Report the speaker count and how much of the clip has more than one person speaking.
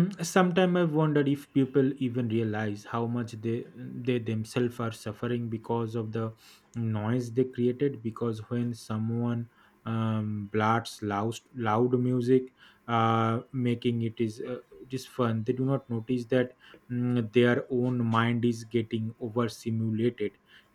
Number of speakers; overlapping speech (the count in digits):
1, no overlap